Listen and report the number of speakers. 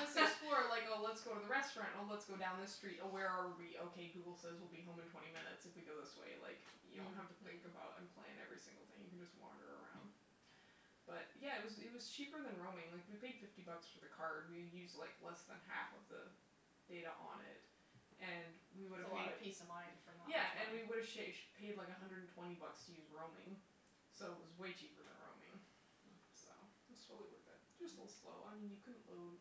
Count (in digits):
2